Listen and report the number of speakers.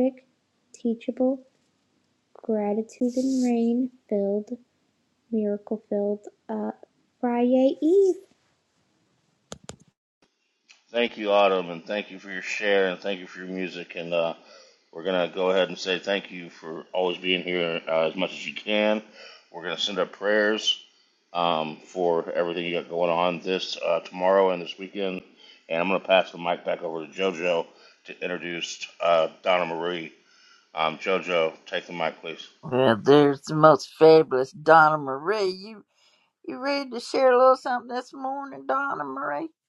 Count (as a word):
three